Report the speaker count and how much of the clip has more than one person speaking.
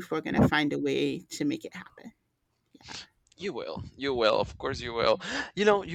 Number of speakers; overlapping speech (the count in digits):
2, no overlap